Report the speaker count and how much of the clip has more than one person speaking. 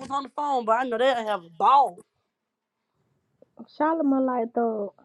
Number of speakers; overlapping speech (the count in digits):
2, no overlap